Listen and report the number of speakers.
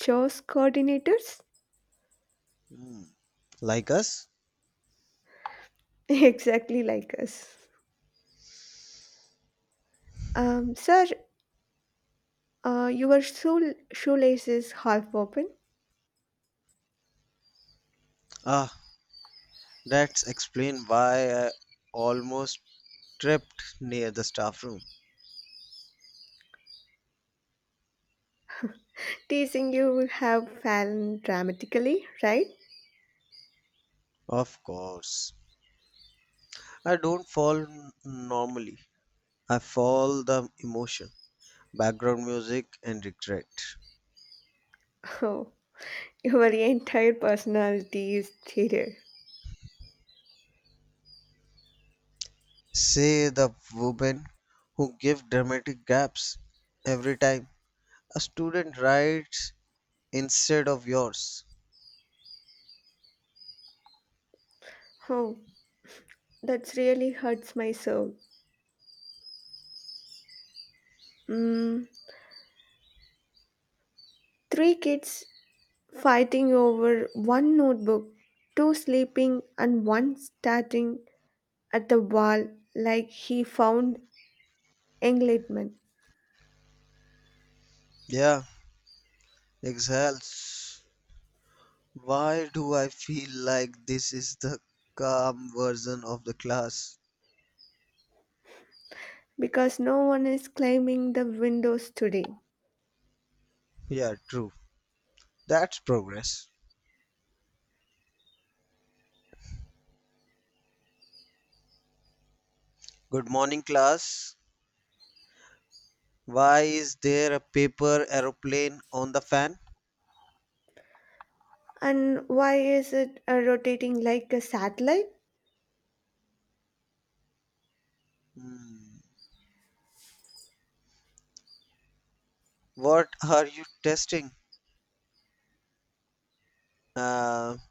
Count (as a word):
two